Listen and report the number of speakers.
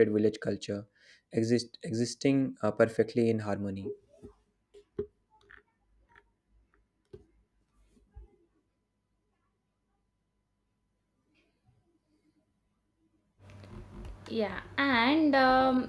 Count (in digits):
2